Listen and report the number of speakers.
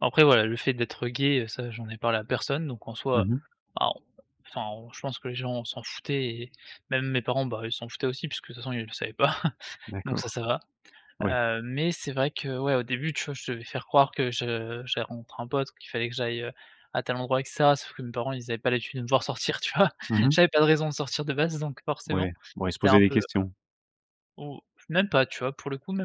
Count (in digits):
2